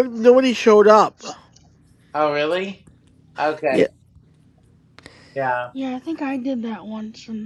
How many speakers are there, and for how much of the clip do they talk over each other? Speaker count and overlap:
three, about 2%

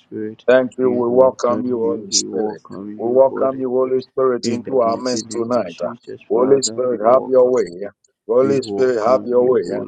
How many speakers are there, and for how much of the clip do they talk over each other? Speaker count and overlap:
two, about 67%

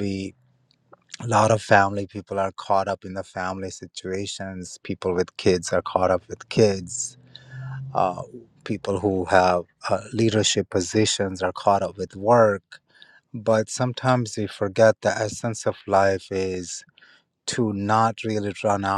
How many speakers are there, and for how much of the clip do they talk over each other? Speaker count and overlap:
one, no overlap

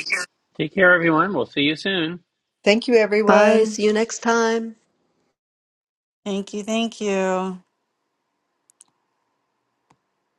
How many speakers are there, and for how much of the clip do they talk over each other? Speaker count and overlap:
four, about 5%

